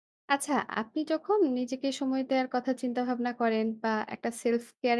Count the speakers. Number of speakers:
one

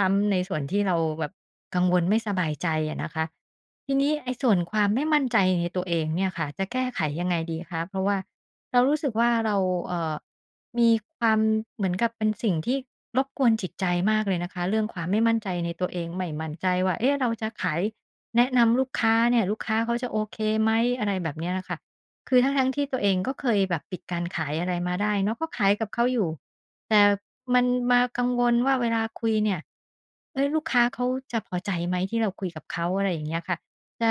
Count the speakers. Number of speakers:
one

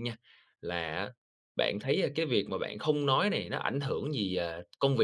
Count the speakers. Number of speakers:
one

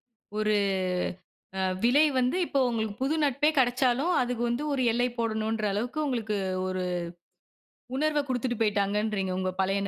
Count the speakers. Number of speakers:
one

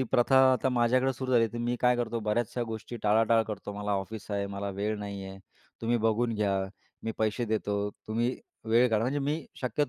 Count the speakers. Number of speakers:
one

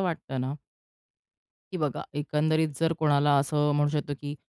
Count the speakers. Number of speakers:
one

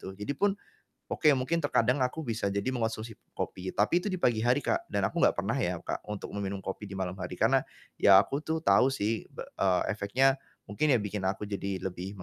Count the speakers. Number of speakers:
one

